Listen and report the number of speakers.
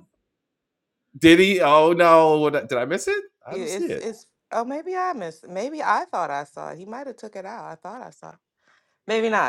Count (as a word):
two